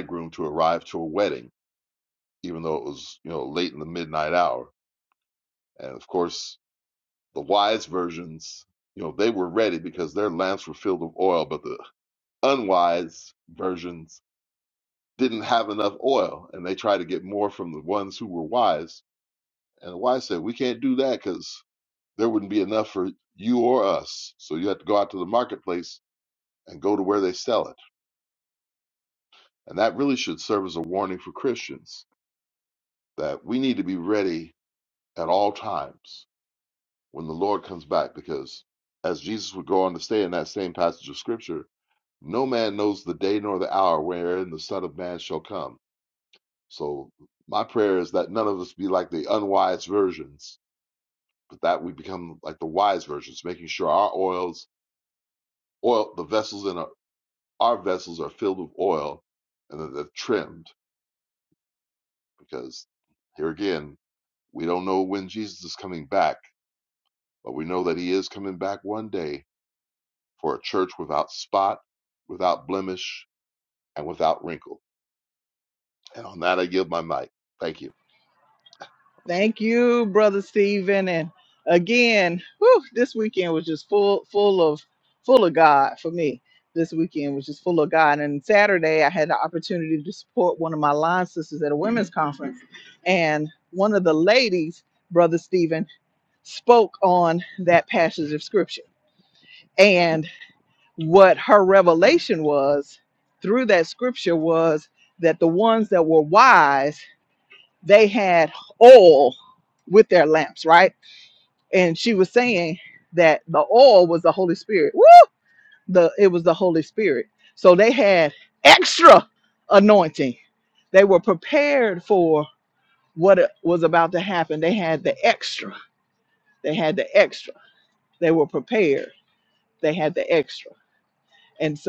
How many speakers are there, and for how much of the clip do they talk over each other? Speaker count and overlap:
two, no overlap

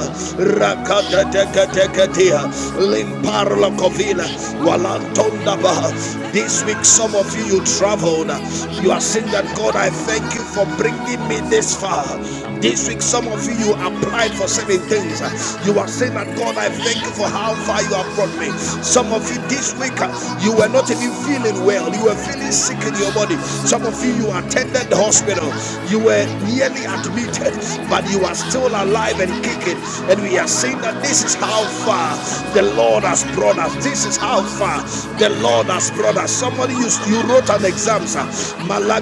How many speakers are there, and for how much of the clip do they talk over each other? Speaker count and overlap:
two, about 66%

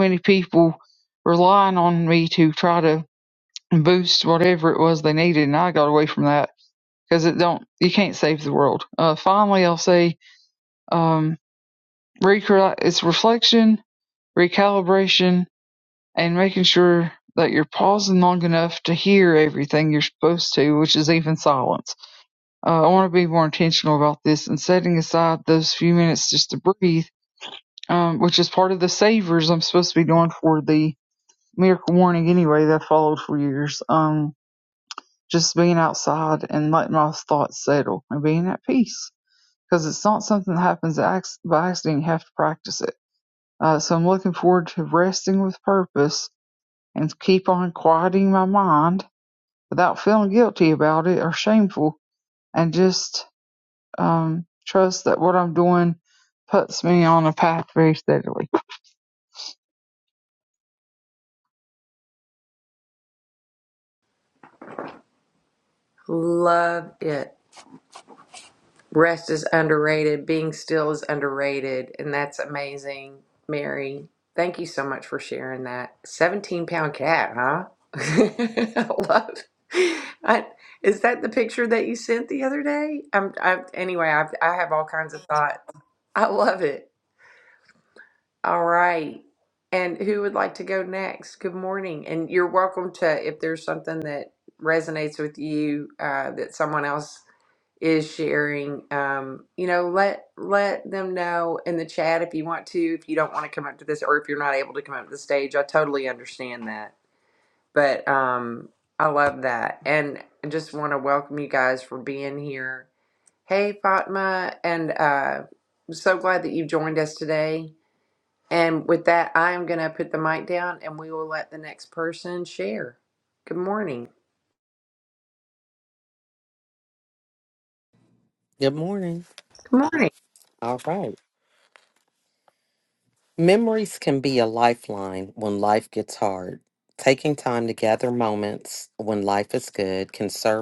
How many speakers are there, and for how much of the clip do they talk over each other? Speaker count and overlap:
three, no overlap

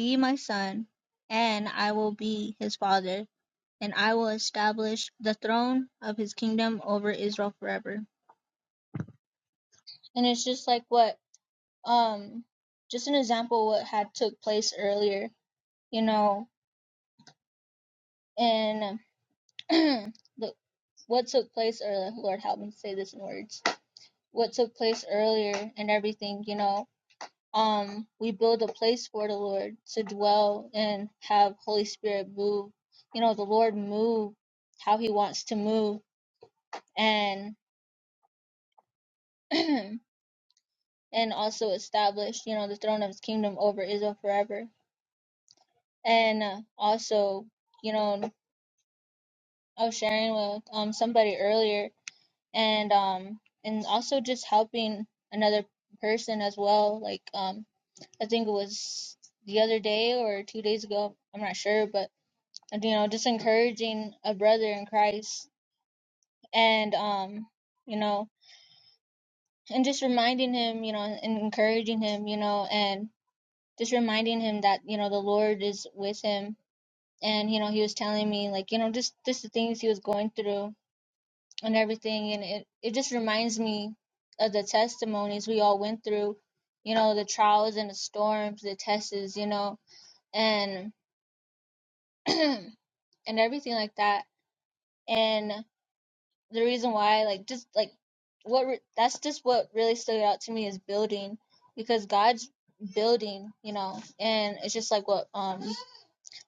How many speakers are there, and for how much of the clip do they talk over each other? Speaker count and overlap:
one, no overlap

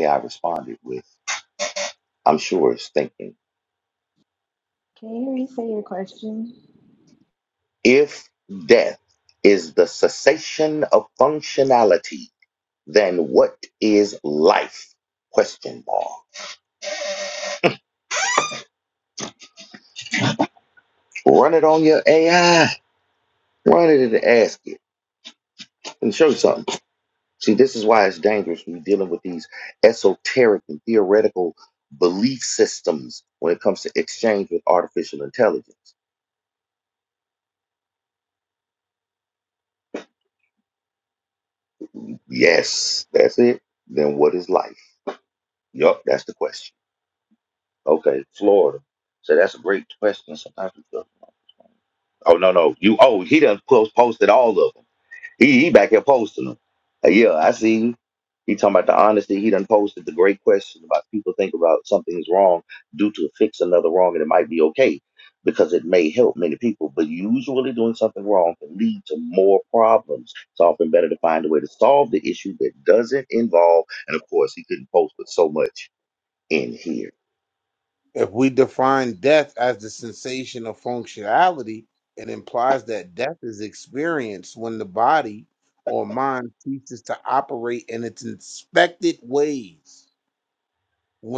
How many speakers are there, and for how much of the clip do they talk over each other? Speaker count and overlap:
three, no overlap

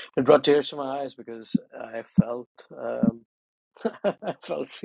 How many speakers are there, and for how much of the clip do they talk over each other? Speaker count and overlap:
one, no overlap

